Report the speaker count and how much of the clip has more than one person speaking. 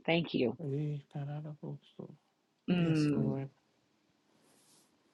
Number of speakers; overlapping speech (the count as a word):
two, about 12%